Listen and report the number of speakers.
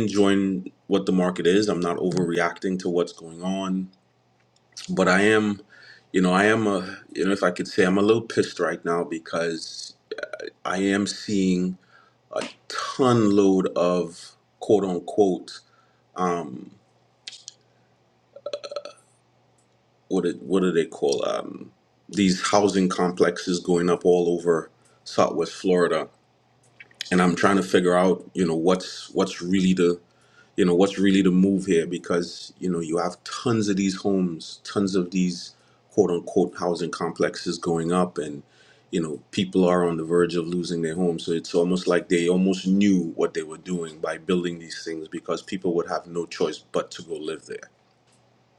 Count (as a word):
one